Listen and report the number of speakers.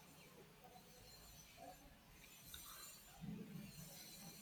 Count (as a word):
zero